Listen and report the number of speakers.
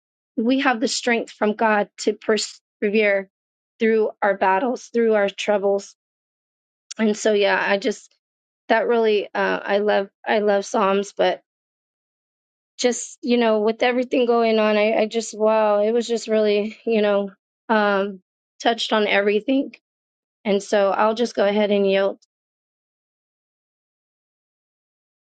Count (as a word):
one